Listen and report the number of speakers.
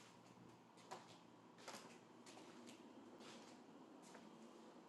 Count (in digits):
0